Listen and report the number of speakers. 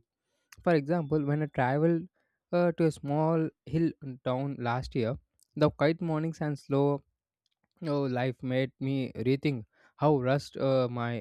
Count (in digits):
1